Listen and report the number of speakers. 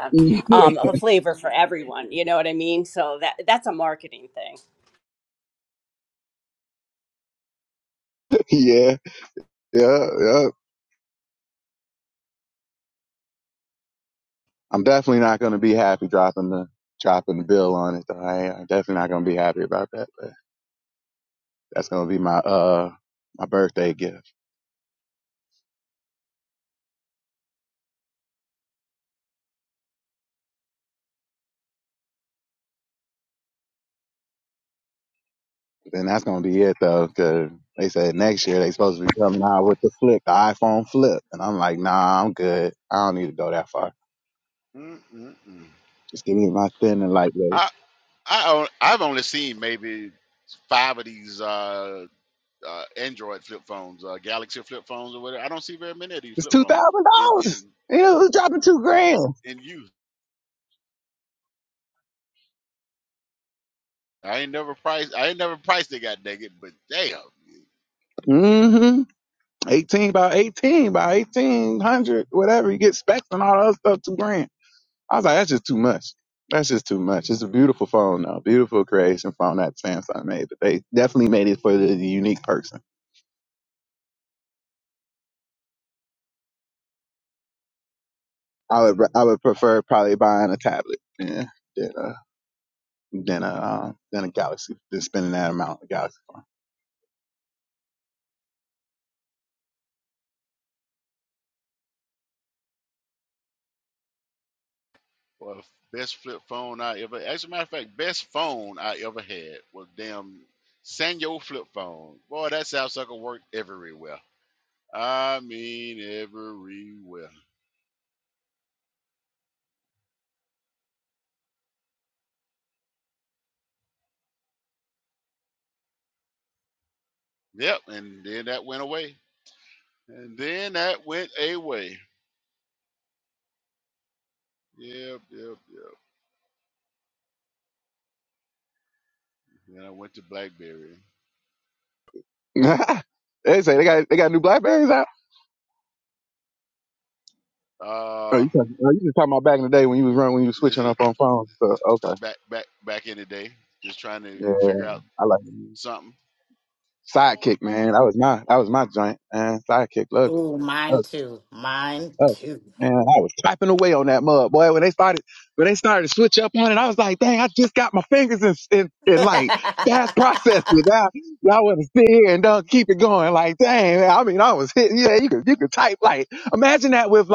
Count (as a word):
four